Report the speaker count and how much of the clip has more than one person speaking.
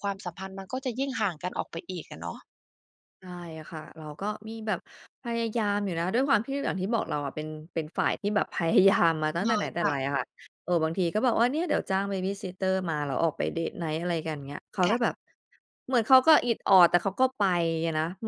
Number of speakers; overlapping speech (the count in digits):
2, about 4%